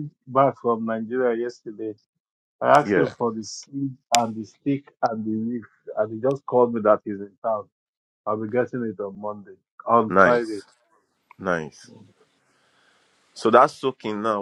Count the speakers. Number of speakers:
2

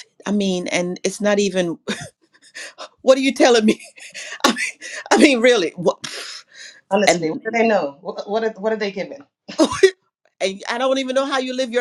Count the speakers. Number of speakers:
2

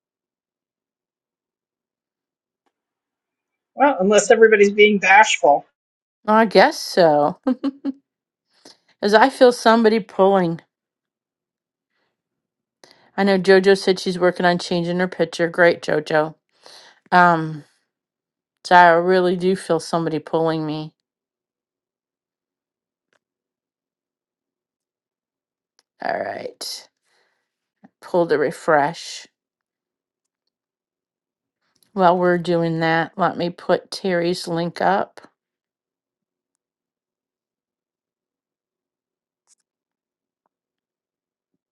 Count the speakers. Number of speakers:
2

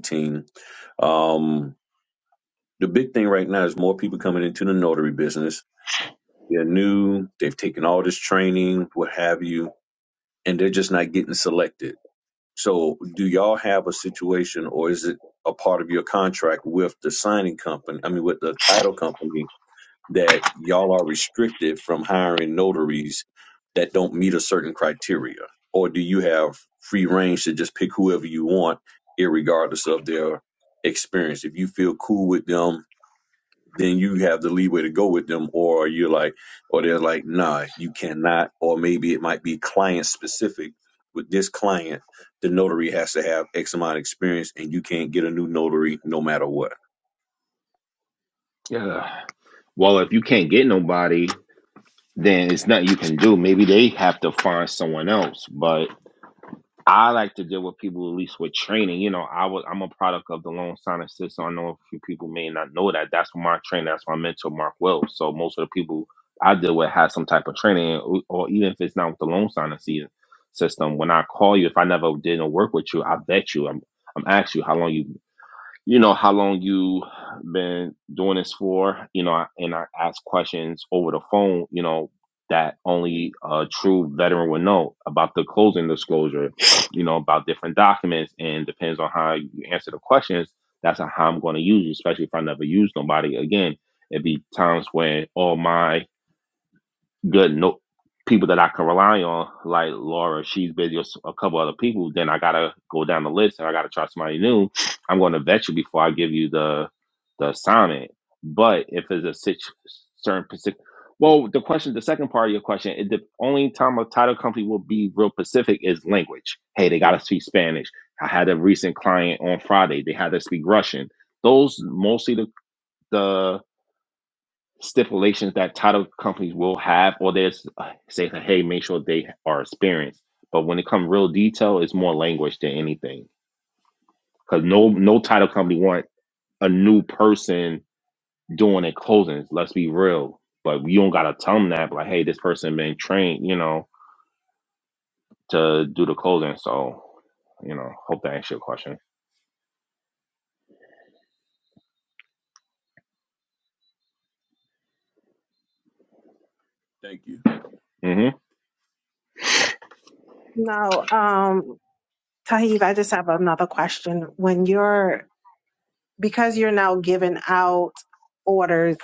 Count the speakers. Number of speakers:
3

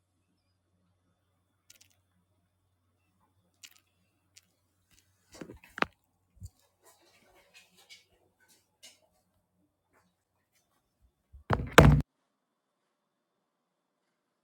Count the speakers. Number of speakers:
0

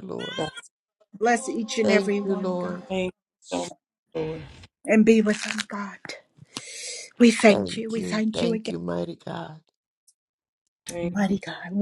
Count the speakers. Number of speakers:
3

